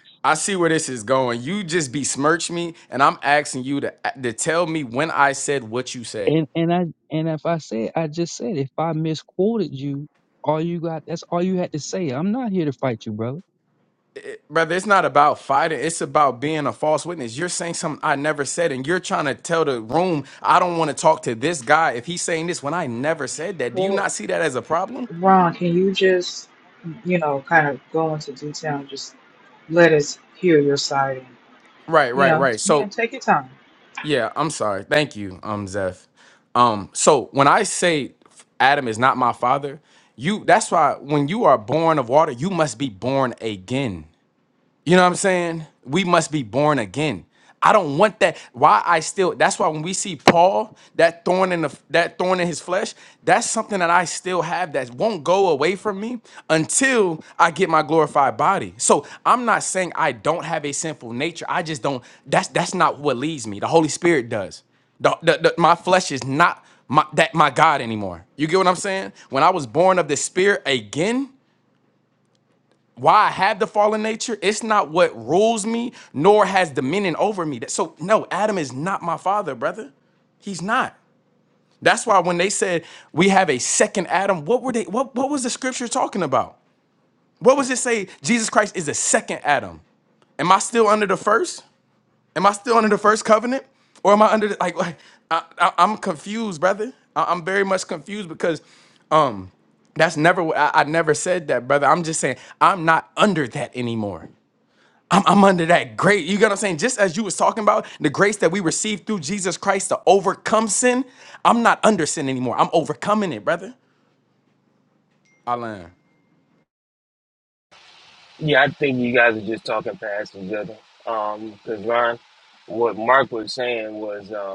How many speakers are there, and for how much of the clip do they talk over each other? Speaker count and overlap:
four, about 1%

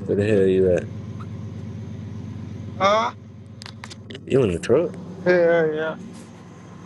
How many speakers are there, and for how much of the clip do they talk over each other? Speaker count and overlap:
two, no overlap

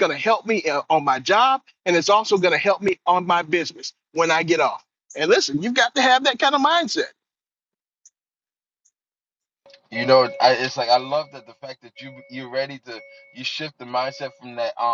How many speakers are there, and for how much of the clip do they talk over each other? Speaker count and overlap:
two, no overlap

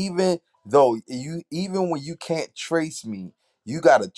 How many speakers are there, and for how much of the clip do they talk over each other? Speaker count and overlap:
one, no overlap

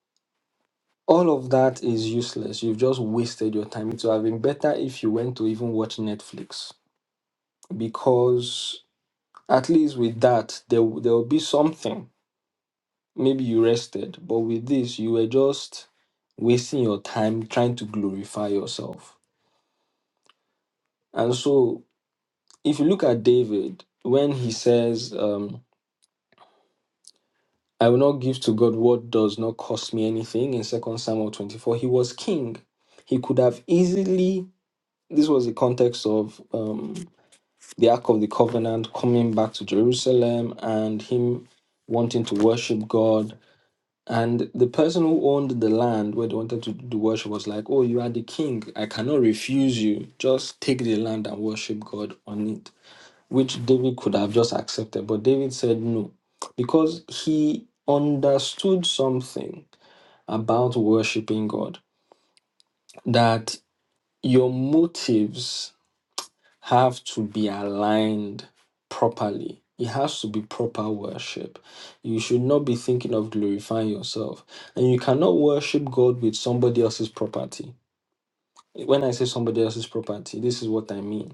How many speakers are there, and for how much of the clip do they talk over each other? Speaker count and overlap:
one, no overlap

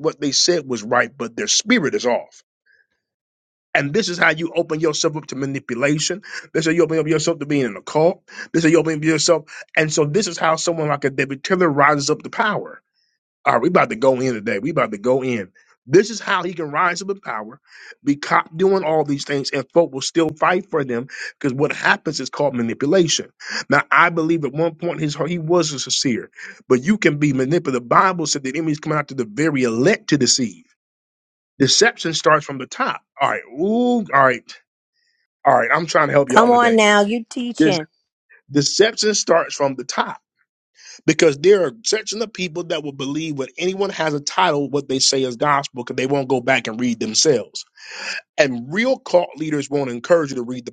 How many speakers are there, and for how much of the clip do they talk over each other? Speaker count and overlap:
two, about 1%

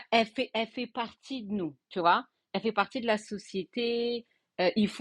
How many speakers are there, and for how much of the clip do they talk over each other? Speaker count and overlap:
one, no overlap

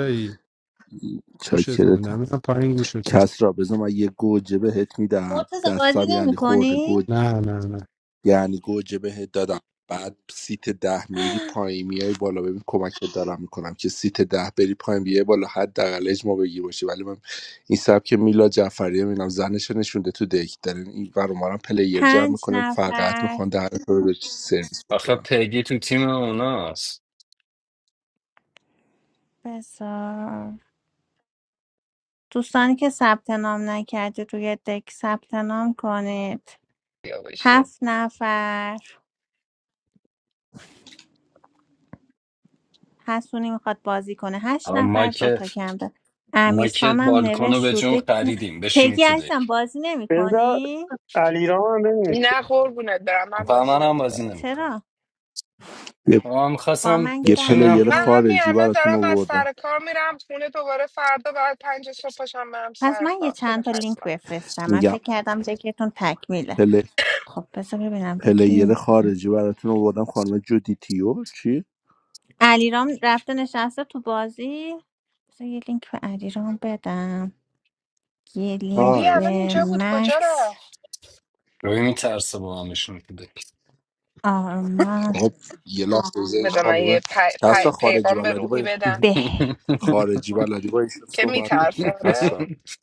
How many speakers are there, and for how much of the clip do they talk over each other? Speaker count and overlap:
six, about 21%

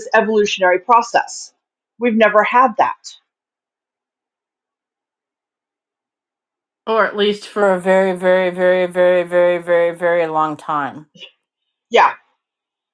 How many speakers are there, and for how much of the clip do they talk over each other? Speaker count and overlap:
two, no overlap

